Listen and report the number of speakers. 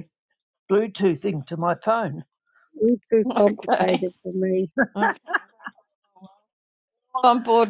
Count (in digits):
3